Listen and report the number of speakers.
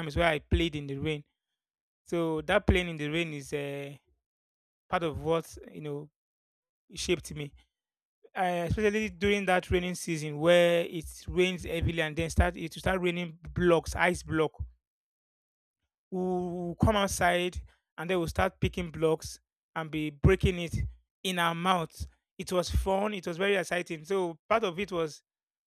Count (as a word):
one